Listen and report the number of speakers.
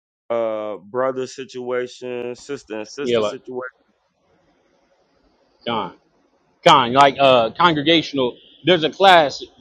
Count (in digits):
2